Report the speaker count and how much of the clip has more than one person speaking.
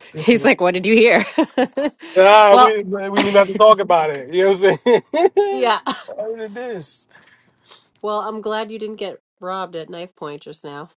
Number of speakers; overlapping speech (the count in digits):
2, about 4%